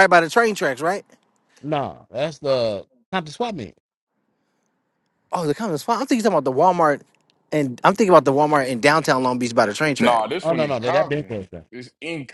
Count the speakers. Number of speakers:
three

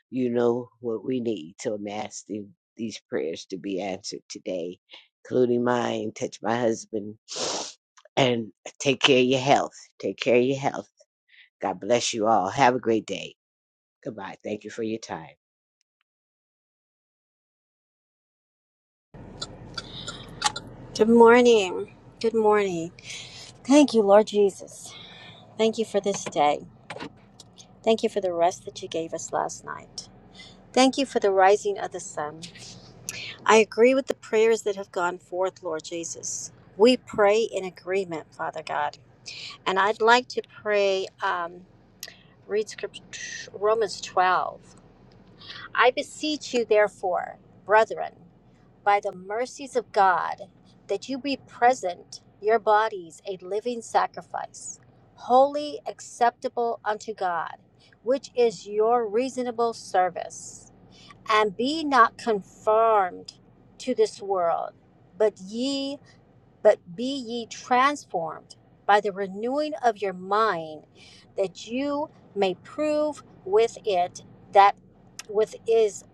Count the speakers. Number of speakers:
two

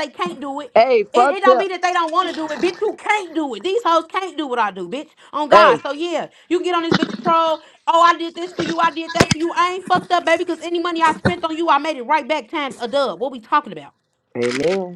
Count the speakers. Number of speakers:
two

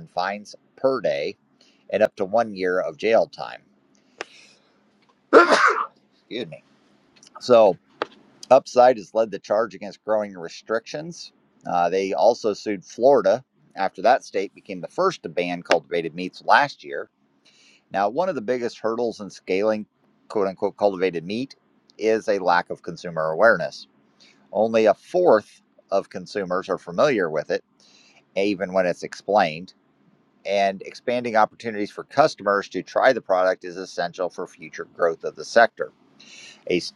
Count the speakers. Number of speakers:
one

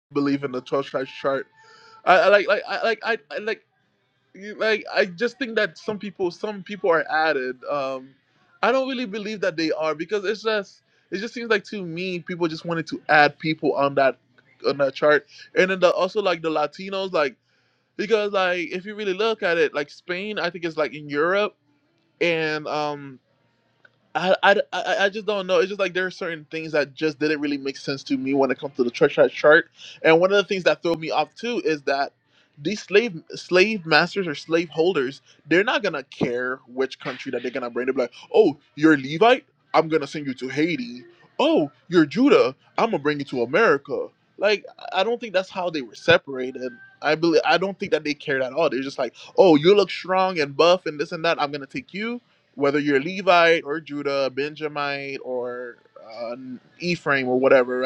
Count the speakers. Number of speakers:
one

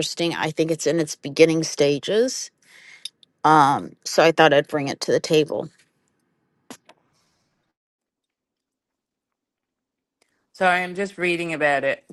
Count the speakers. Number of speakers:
two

